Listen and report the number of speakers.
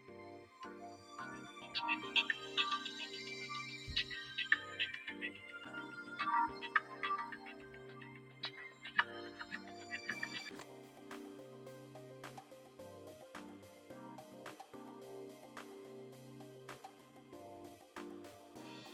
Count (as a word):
zero